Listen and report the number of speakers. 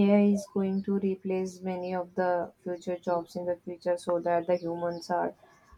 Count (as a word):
one